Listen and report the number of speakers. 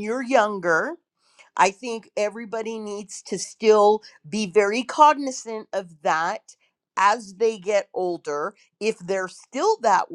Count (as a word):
one